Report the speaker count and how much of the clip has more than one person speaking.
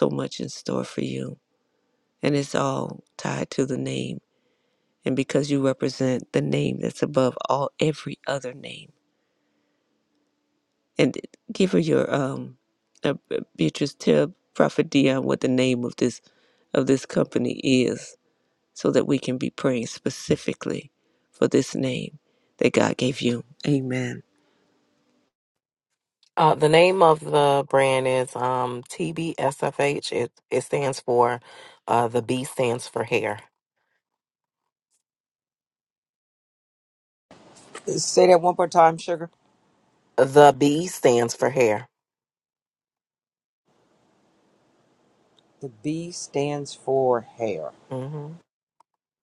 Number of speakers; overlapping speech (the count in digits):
3, no overlap